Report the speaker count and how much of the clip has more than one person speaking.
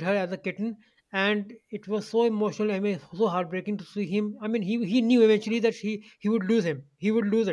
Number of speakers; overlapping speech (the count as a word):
one, no overlap